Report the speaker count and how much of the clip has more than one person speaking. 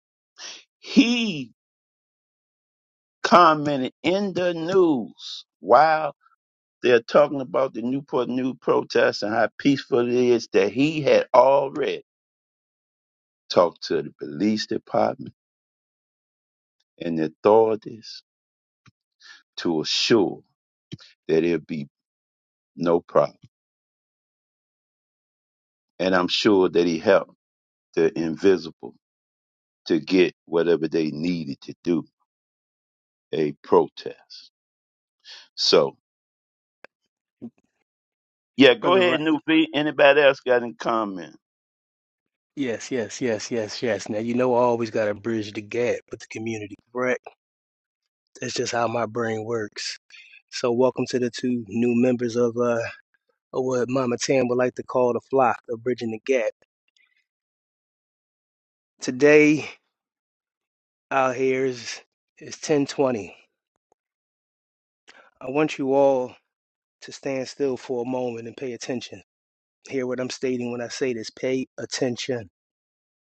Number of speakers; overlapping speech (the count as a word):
two, about 1%